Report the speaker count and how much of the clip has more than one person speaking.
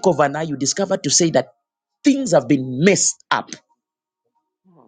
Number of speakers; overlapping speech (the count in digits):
1, no overlap